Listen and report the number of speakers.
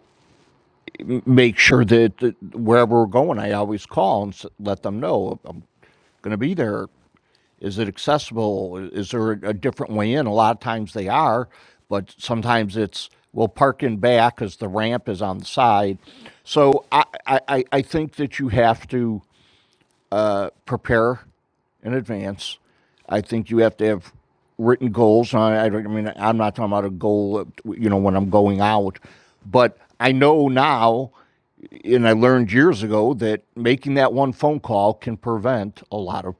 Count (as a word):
one